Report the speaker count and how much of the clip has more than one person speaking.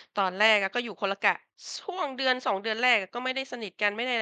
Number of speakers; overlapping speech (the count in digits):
1, no overlap